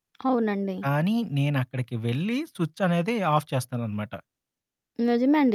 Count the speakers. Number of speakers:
2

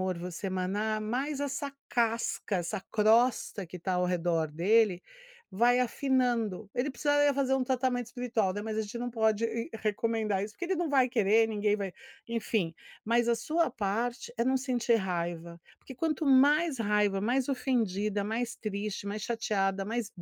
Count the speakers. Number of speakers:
1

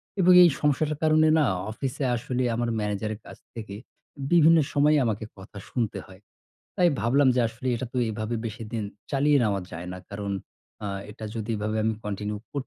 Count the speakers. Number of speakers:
1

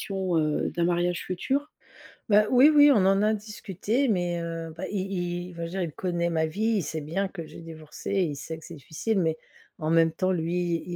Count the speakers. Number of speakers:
2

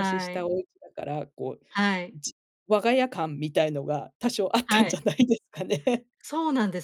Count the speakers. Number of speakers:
2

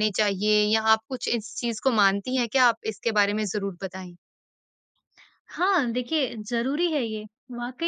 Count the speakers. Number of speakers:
2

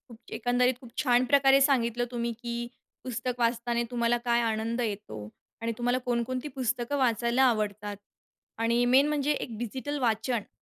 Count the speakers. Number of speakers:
1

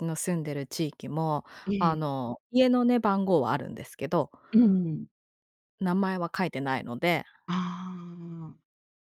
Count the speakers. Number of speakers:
2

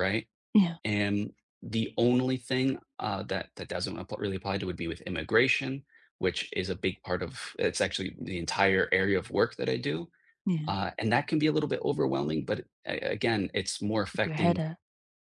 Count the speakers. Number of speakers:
2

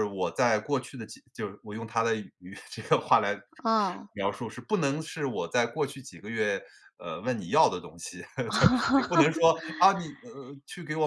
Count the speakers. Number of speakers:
2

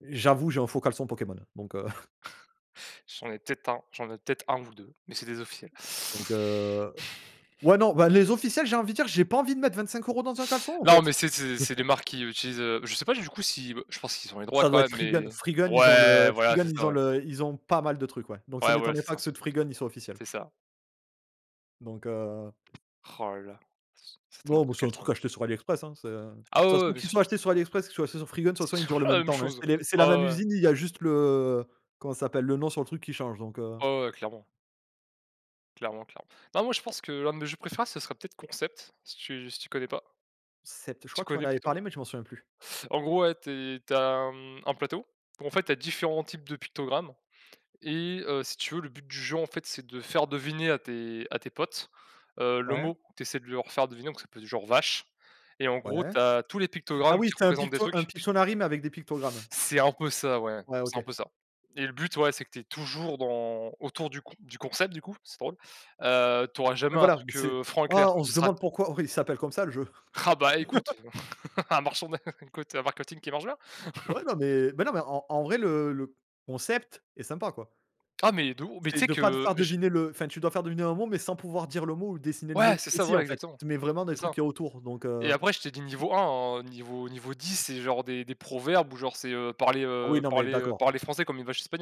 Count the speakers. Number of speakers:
2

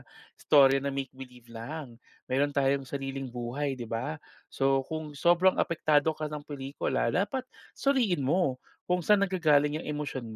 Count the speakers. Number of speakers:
1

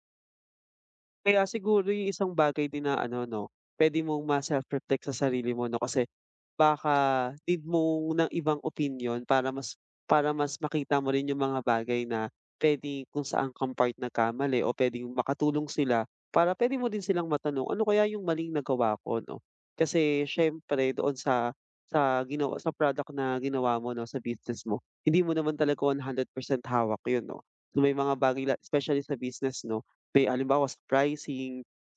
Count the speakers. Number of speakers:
1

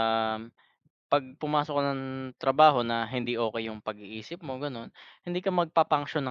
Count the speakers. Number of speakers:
1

